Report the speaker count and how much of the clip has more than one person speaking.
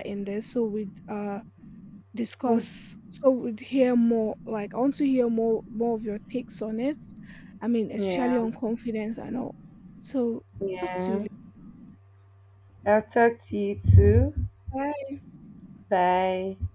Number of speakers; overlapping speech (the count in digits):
2, about 7%